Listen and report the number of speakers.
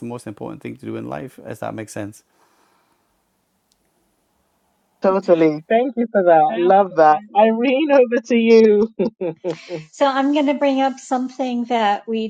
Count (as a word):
three